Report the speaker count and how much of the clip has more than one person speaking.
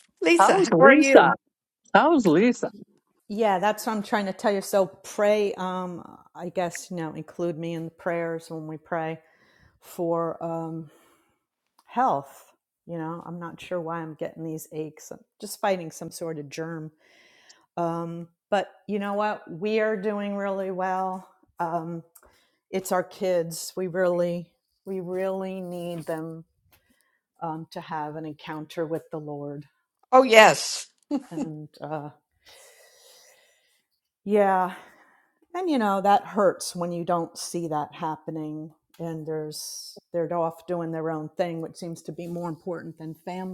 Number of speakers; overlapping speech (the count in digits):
3, about 2%